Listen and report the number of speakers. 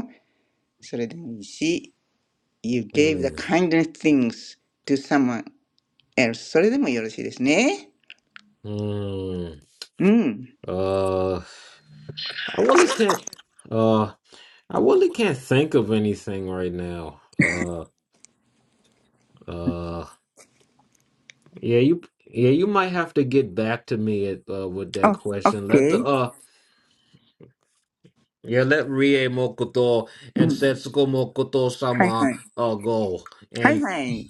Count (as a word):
two